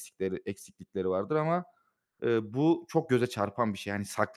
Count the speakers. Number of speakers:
1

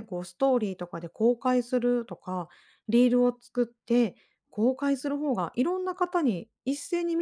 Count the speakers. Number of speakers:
1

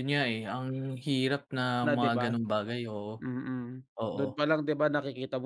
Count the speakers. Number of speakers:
2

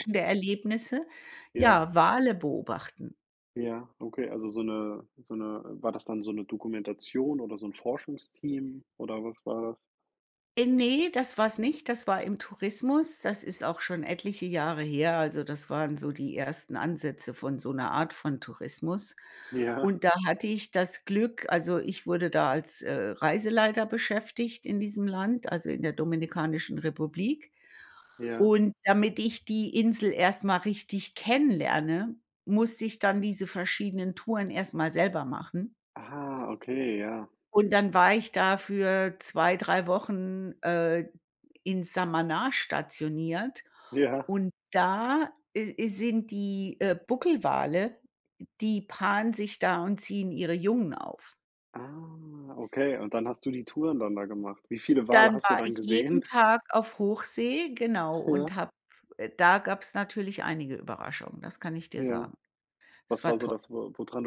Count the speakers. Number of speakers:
2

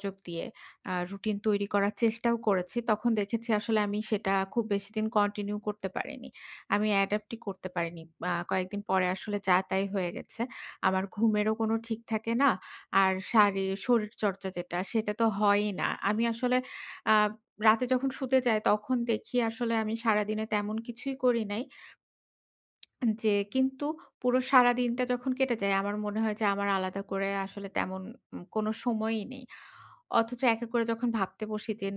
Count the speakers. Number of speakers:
1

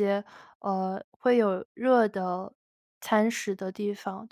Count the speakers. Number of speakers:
1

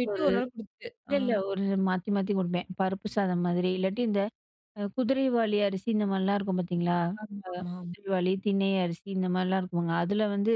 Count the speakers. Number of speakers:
2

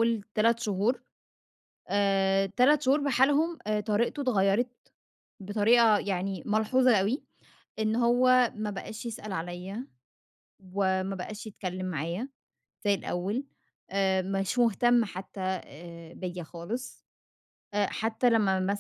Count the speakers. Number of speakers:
1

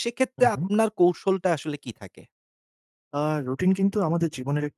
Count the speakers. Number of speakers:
2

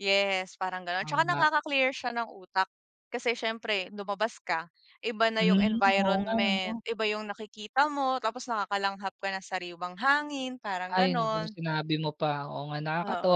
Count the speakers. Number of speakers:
2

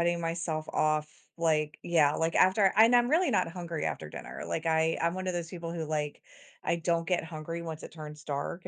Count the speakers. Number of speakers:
1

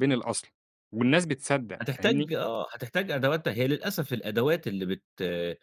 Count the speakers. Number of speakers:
2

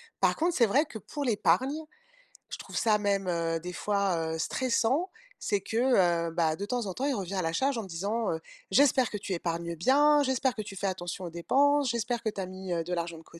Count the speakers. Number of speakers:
1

